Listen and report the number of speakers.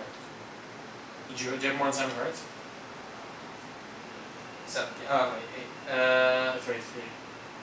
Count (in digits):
2